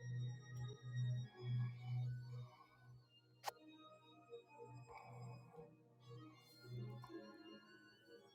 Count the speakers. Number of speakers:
0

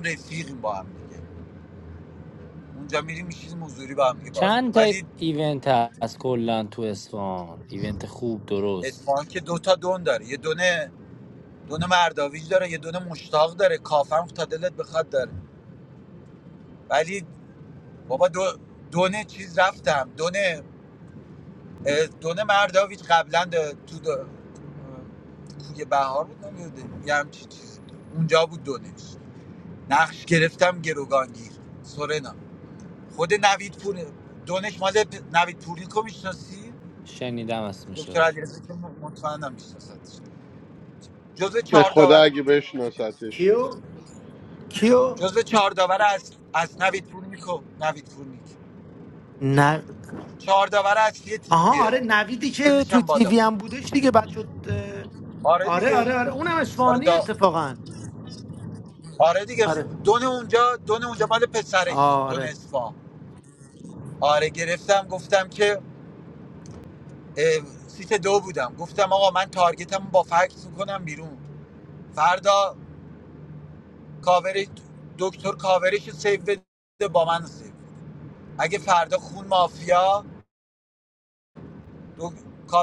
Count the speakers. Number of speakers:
4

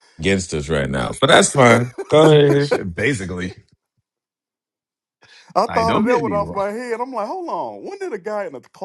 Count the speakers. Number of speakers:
3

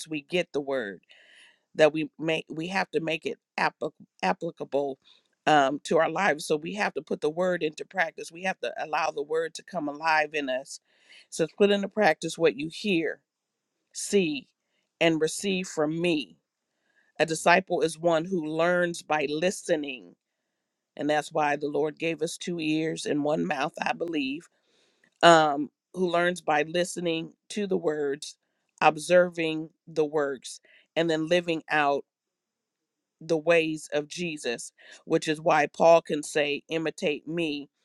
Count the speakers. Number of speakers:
1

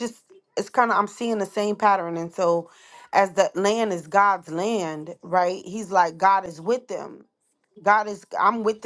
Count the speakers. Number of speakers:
1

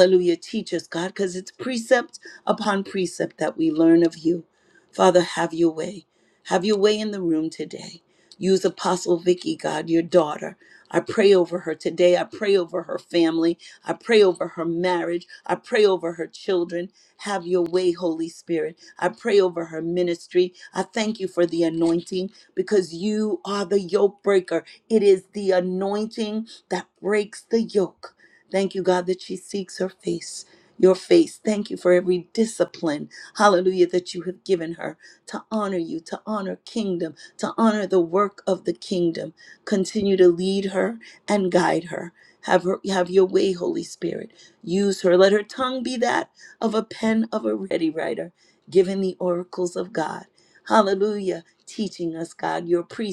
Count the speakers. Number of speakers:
1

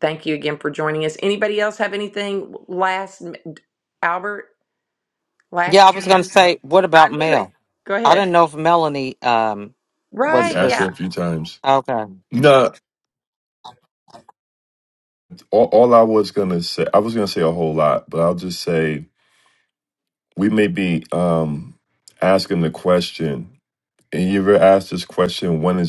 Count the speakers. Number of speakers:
3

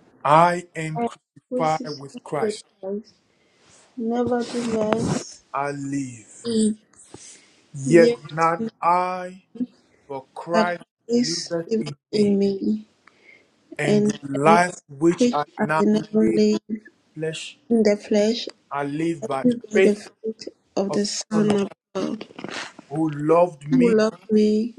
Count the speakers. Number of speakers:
2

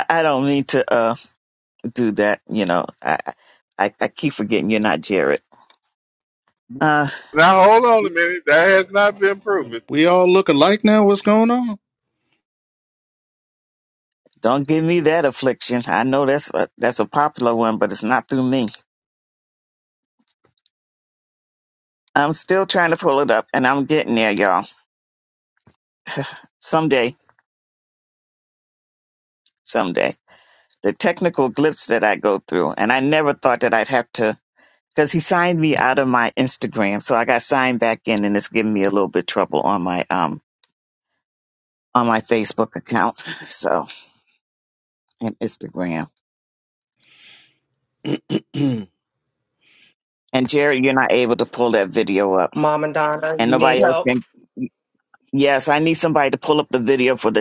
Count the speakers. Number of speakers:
4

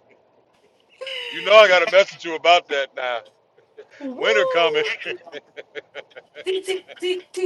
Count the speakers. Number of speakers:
2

